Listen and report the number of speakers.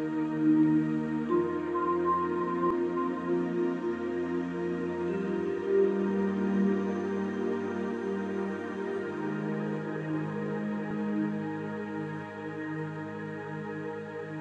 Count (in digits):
0